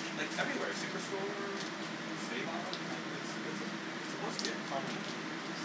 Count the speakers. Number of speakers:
one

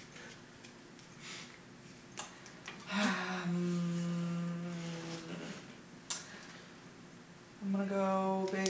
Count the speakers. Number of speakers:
one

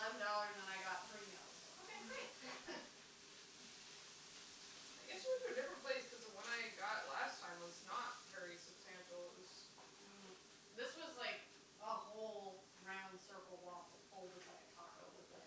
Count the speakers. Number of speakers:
two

